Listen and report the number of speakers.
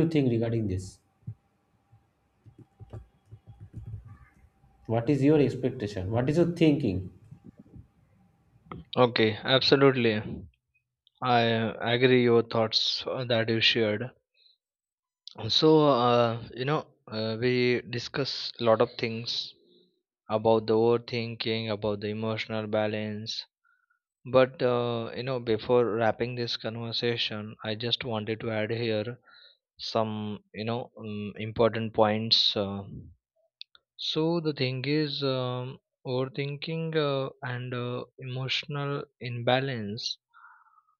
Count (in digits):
2